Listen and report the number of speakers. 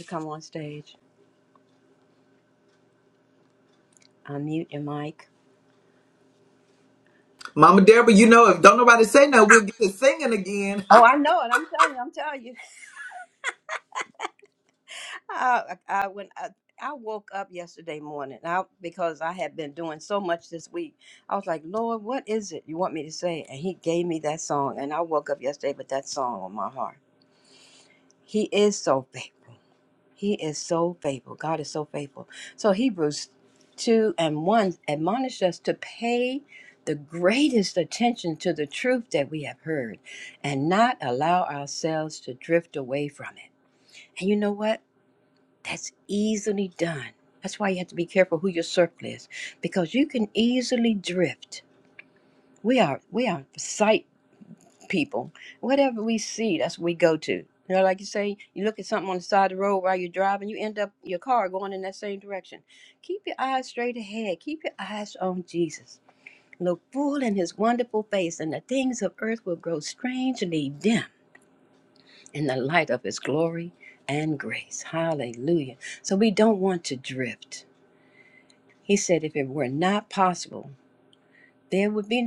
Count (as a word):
two